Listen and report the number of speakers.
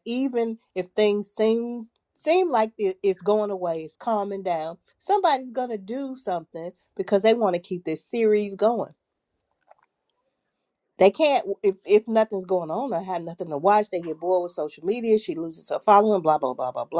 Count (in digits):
1